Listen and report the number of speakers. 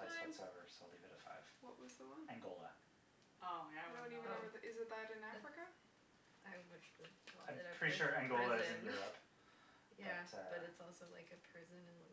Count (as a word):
four